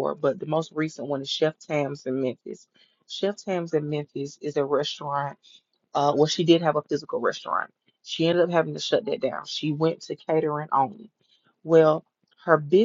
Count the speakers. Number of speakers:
1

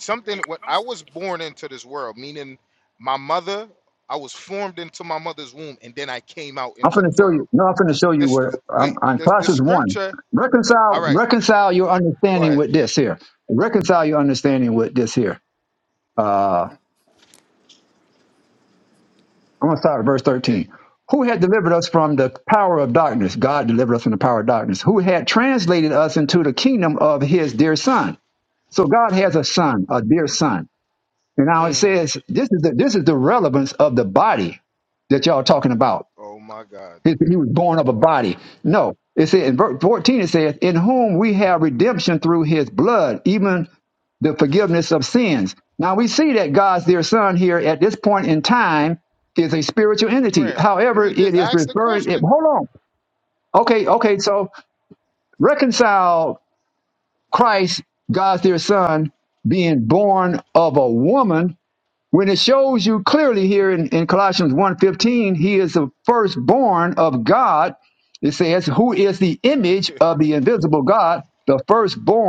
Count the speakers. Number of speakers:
2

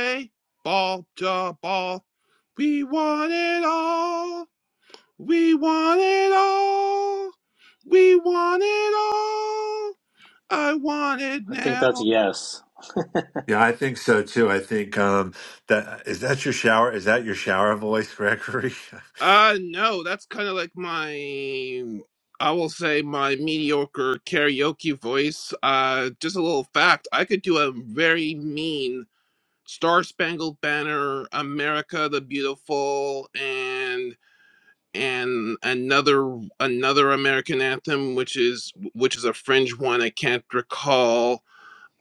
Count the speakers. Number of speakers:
3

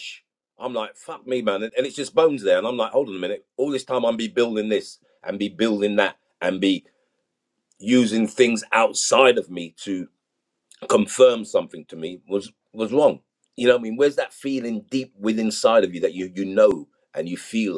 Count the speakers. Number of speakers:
1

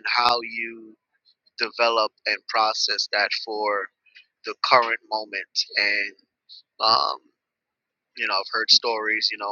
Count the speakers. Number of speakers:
1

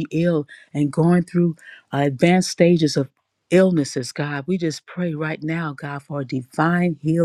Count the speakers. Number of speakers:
1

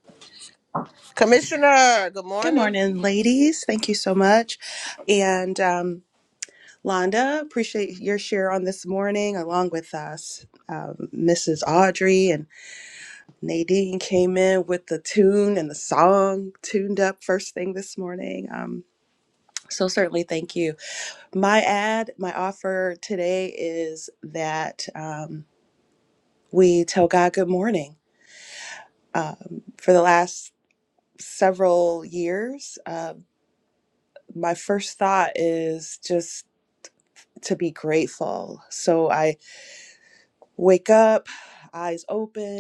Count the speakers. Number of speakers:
2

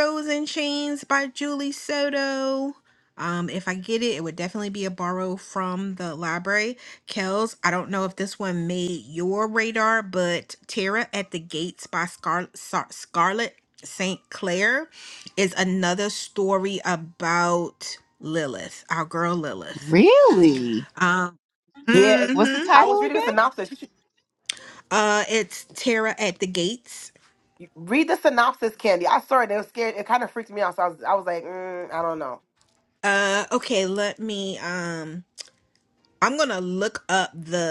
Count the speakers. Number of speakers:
3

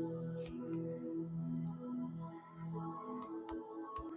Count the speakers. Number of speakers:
0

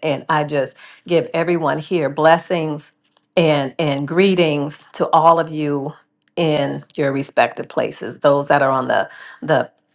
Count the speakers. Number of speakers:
1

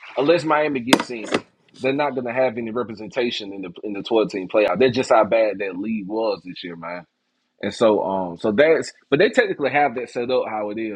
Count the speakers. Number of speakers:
1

